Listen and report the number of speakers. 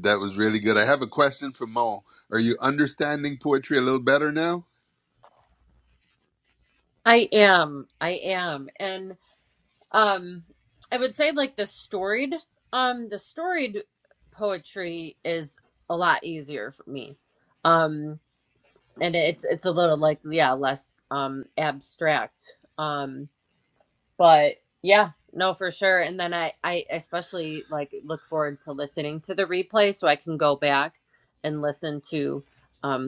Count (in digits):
2